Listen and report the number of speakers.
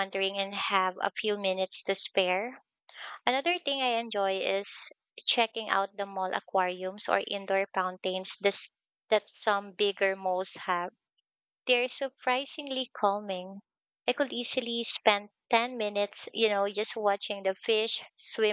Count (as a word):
one